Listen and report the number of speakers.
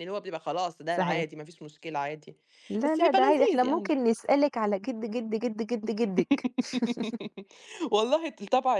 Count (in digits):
2